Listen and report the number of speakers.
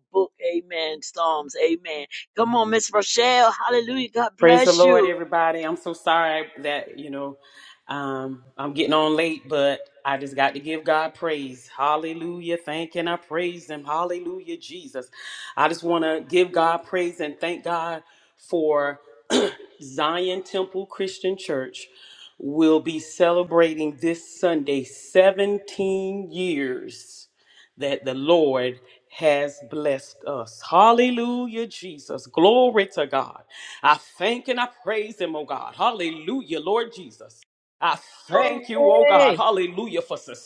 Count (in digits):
2